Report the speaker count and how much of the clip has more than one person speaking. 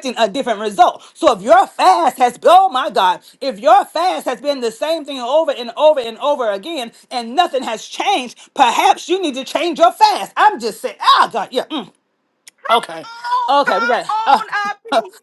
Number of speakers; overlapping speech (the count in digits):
2, about 7%